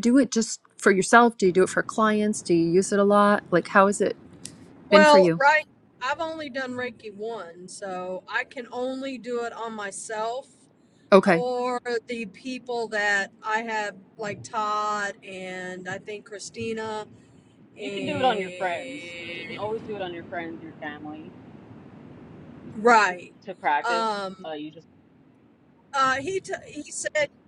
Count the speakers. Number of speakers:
3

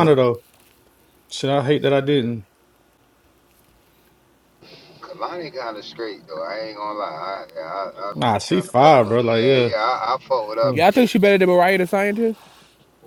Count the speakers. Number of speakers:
3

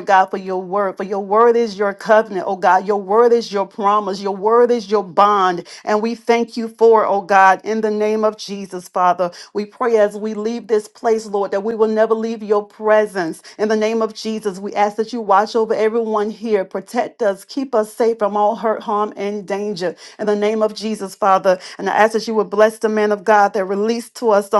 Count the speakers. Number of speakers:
1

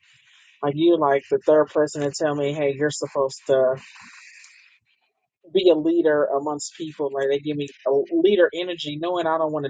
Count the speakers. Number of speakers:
1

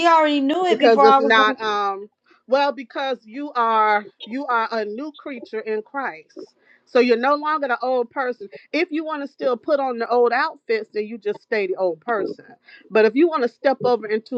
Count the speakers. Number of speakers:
2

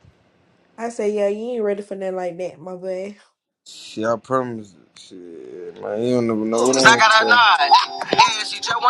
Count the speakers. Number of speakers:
3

